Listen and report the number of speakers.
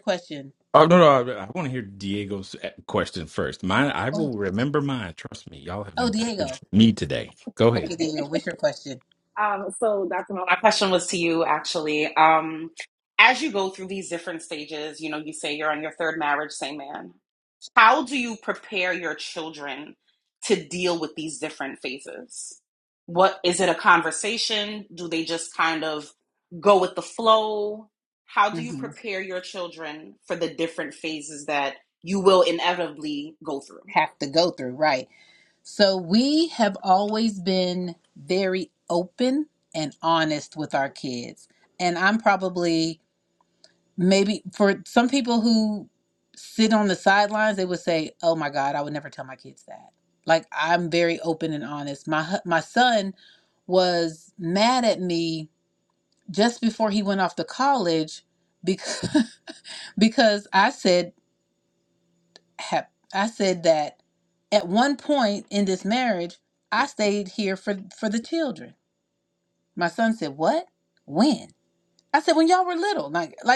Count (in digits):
3